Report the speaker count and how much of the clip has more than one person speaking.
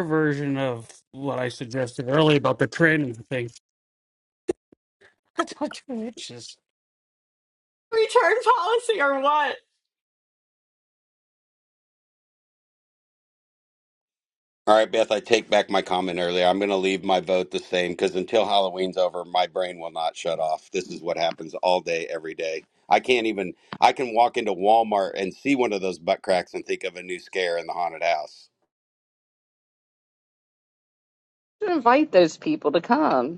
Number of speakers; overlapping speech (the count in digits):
4, no overlap